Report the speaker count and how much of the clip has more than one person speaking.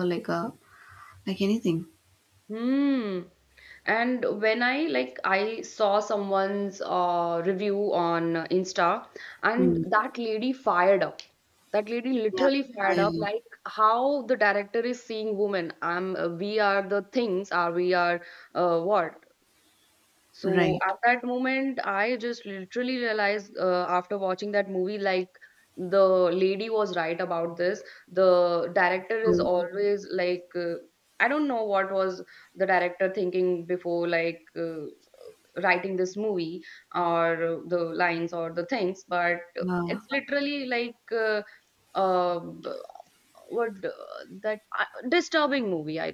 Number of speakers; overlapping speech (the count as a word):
two, about 4%